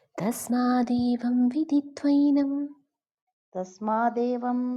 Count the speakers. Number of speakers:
2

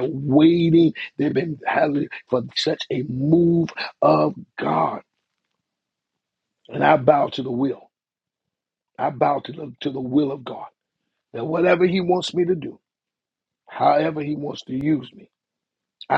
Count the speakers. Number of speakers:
1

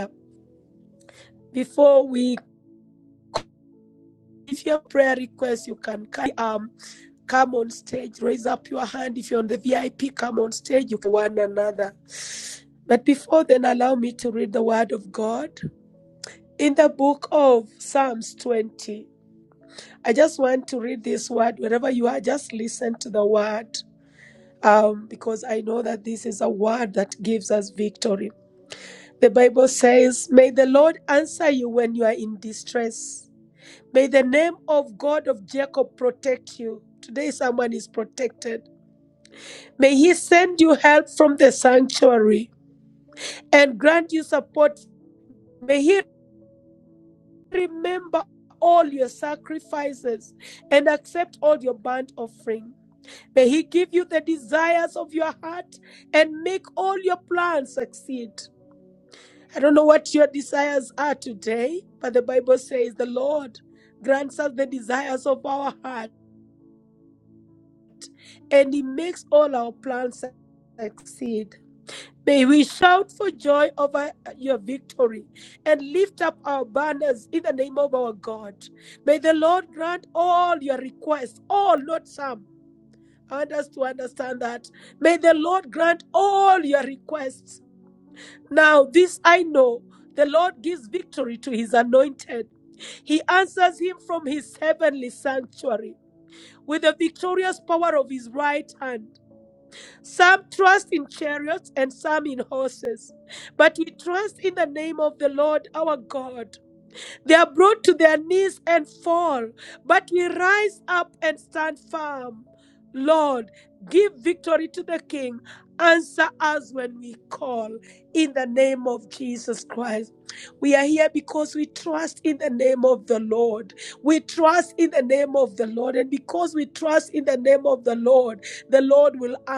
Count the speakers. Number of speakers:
1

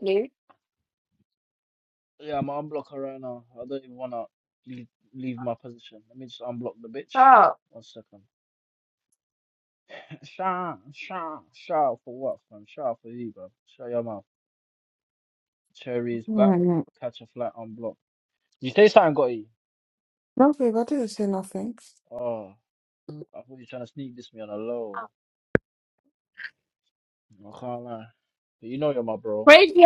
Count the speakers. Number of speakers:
3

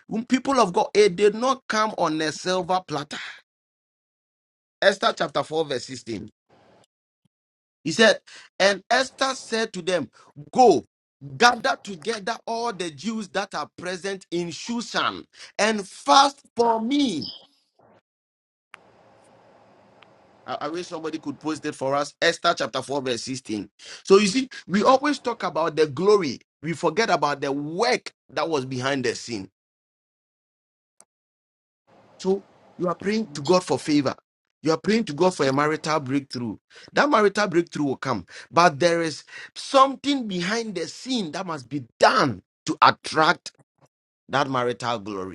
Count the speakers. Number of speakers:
1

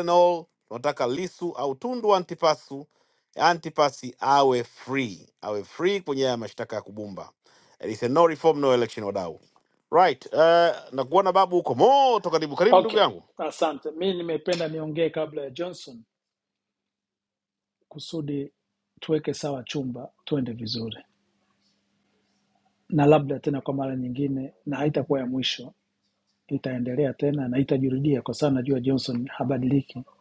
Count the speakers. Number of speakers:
2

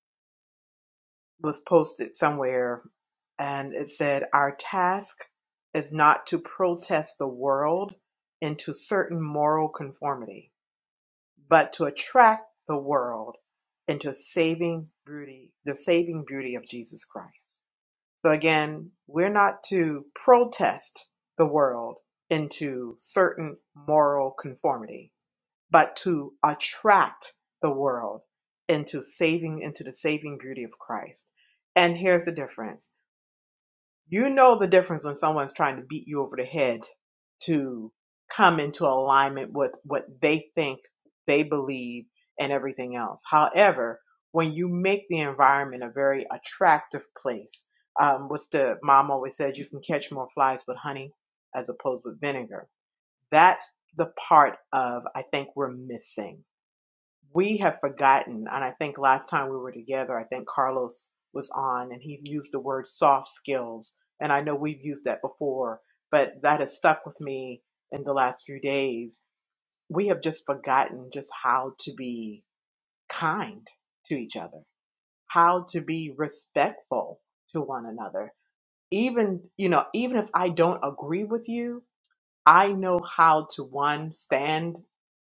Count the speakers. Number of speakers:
1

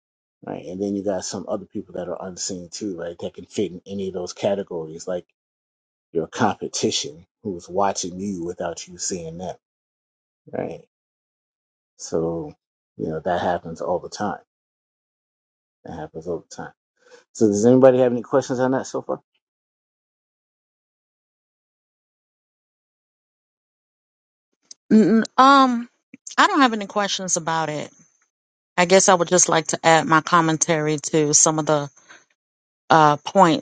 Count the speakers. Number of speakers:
2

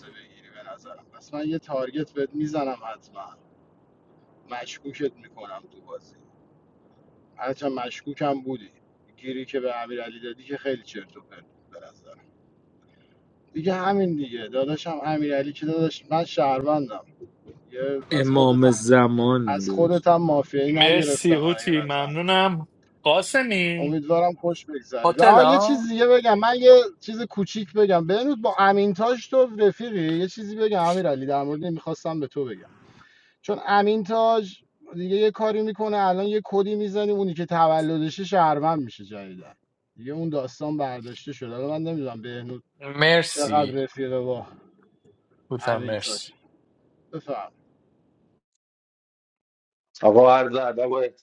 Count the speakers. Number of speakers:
4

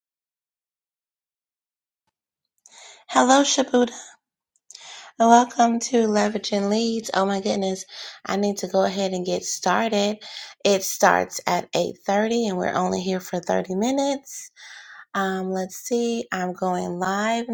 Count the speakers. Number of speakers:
1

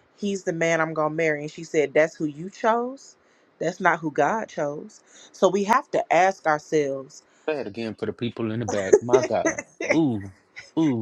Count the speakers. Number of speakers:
2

